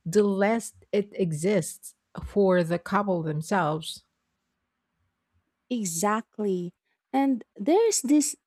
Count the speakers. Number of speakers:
2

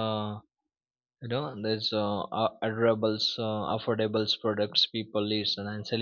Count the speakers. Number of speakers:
1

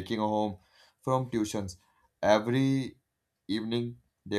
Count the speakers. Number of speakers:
1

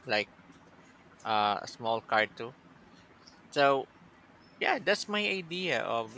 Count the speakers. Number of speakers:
1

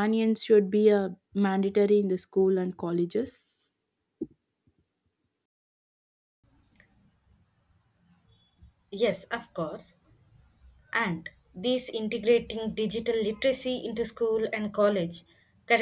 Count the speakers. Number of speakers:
2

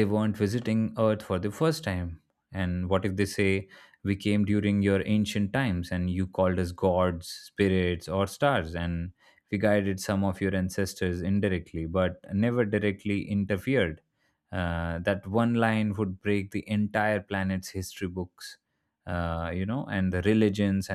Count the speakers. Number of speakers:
1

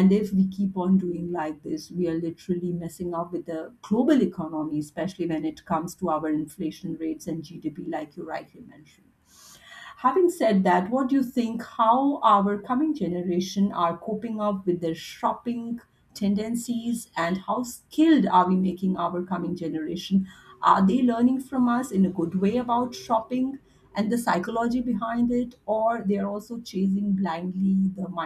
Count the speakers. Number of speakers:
1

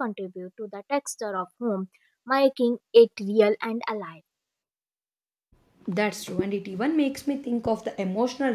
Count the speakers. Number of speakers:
2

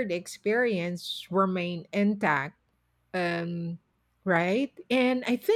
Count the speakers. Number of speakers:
1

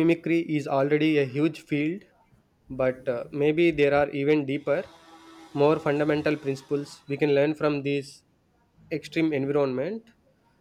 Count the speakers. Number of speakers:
1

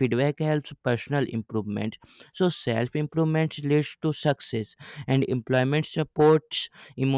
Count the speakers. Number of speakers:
1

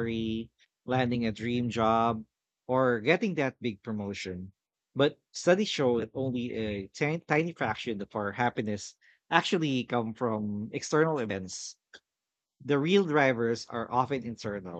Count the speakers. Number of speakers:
1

